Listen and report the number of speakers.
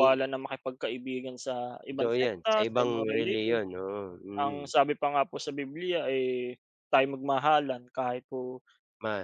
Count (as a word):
two